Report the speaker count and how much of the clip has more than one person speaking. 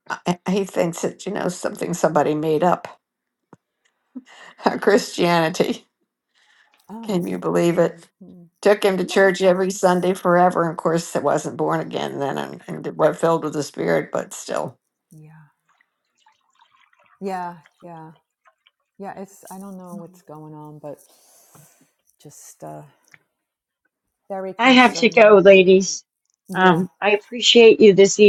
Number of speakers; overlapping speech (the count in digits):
3, about 6%